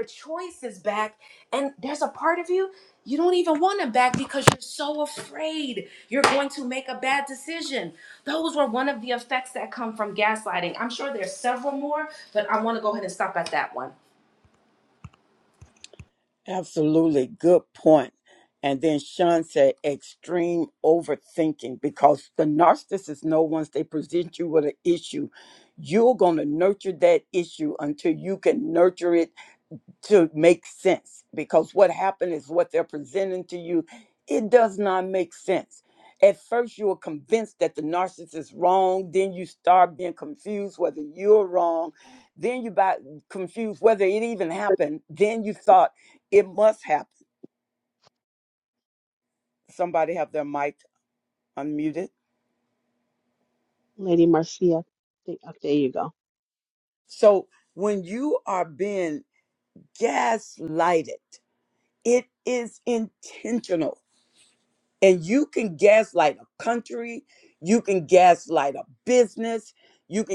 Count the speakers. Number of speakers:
three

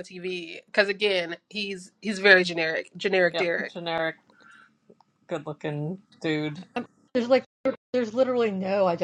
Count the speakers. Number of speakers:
three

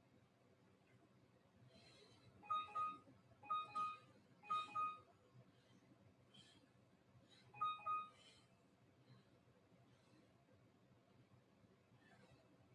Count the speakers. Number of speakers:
zero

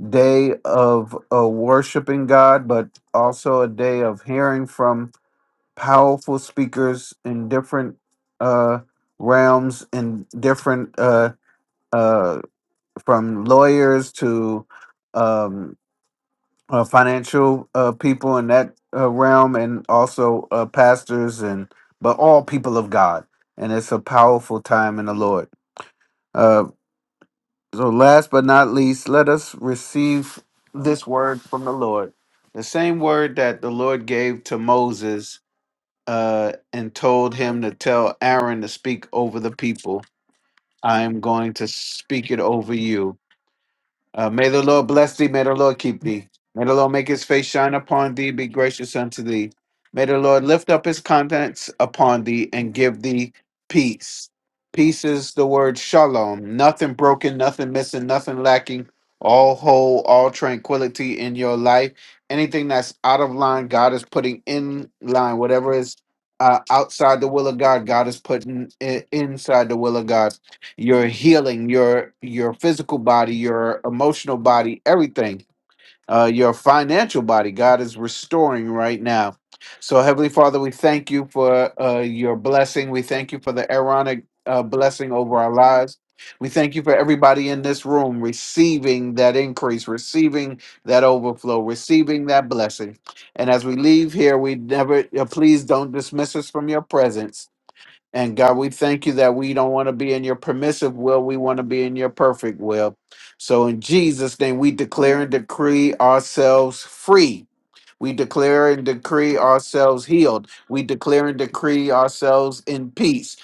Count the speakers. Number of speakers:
one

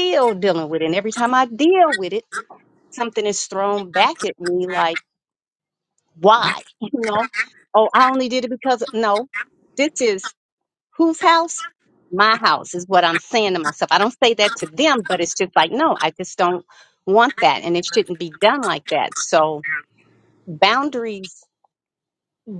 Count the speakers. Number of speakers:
one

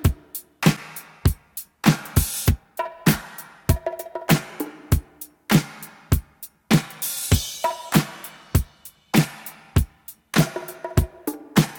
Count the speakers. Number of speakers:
zero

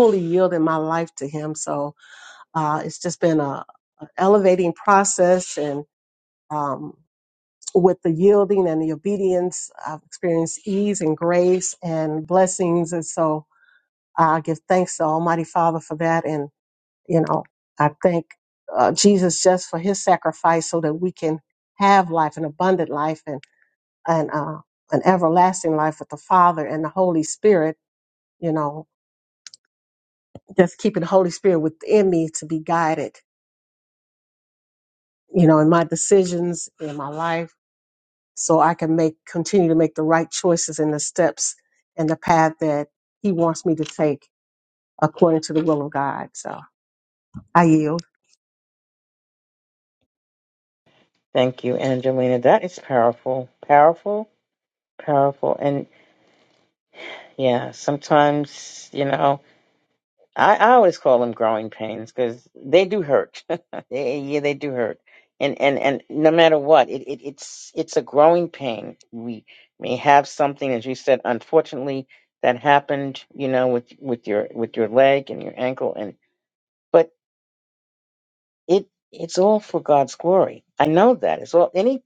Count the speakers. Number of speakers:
two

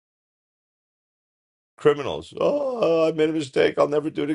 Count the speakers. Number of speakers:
one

